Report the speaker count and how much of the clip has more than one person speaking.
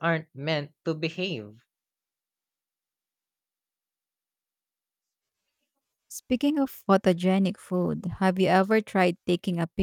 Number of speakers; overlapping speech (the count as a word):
two, no overlap